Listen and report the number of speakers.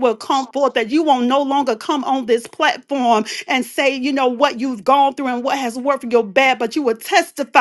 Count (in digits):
1